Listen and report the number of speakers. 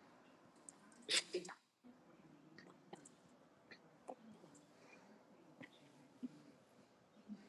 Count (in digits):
0